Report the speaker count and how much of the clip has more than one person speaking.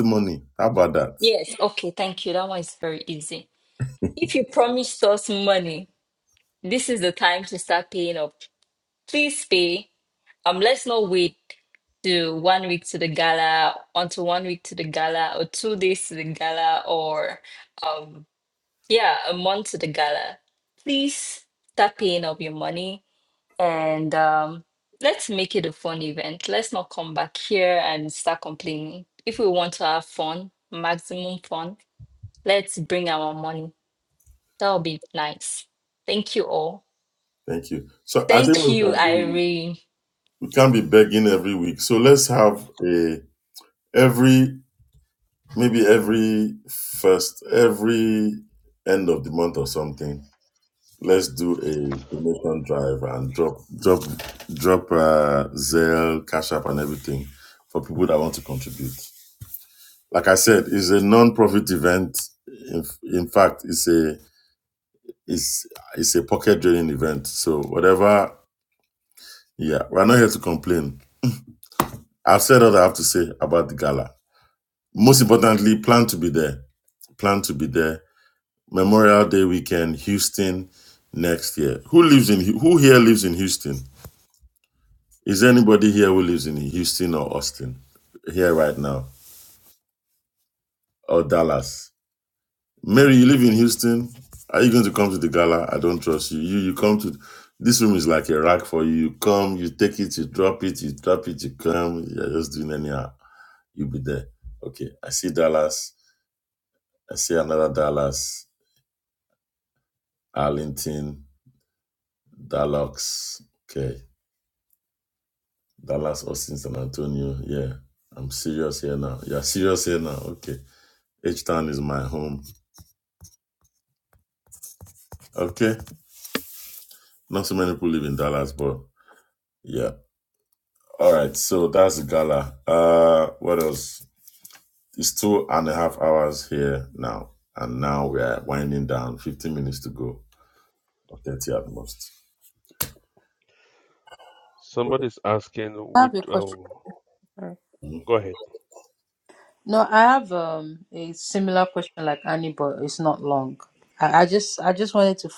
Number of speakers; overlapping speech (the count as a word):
four, about 1%